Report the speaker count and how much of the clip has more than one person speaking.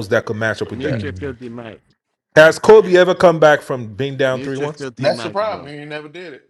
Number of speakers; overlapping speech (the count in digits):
3, about 25%